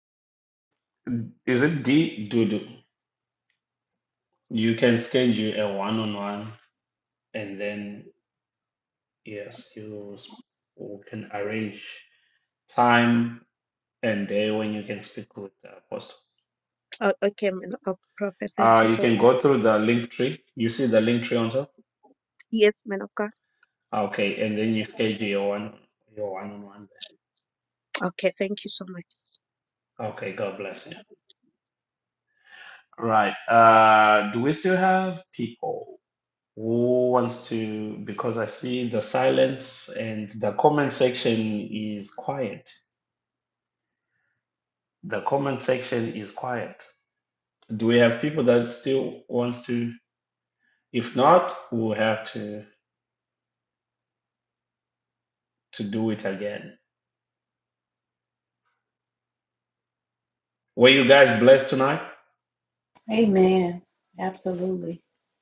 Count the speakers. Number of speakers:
3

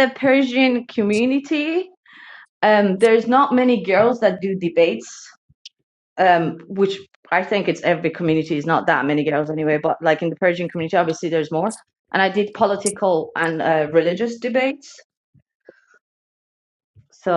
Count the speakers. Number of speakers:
1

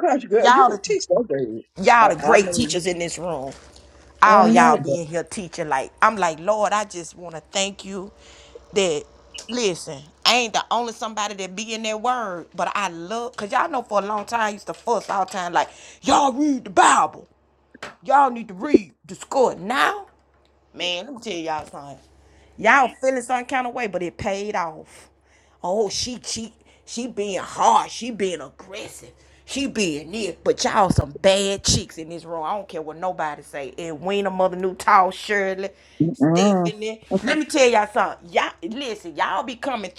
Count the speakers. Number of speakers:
2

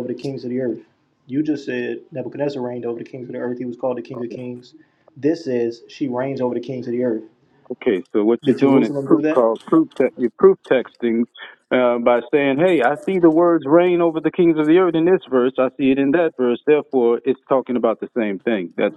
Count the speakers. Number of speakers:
2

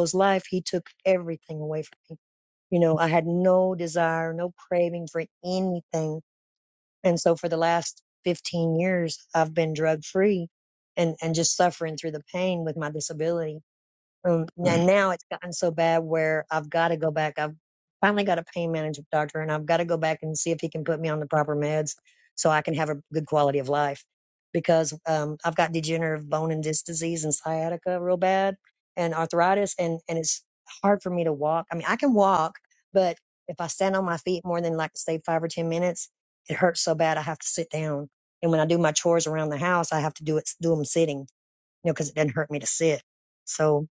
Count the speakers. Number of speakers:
1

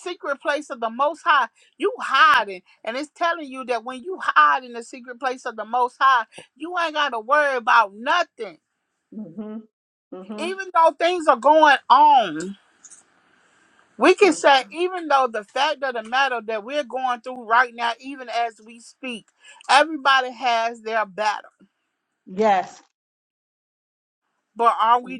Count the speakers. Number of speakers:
2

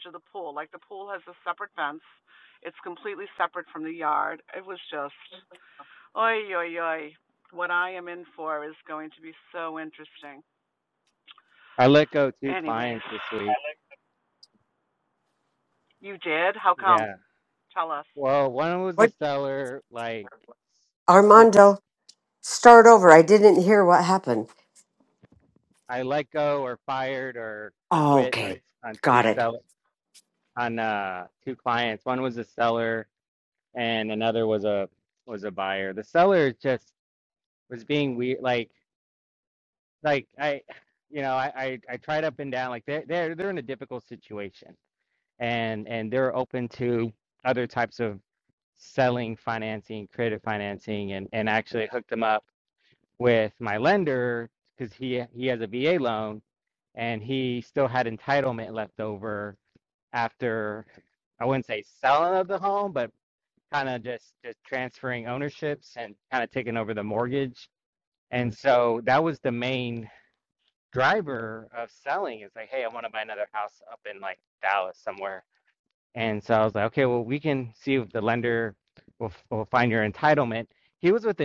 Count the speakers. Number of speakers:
3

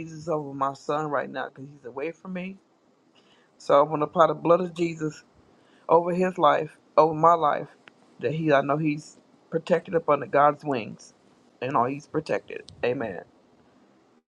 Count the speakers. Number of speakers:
1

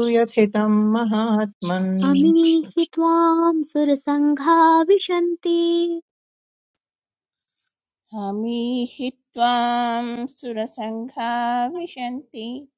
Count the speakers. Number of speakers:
3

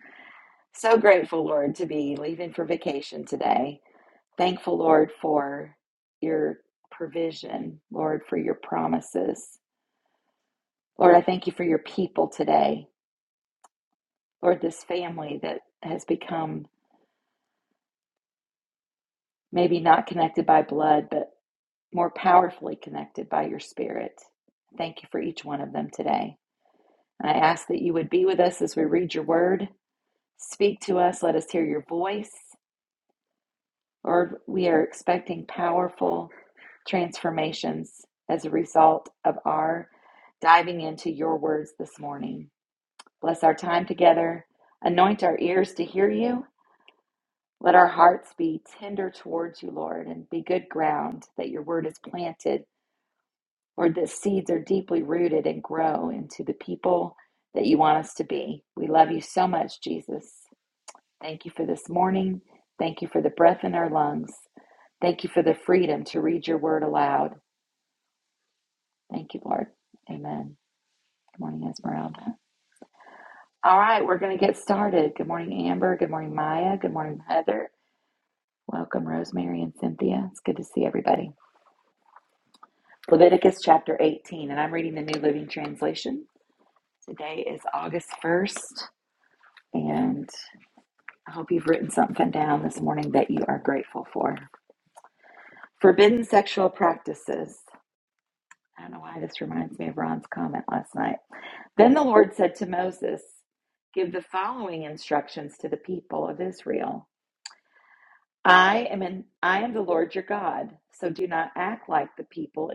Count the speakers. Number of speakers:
1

